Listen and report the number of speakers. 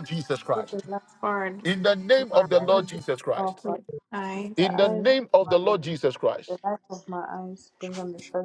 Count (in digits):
3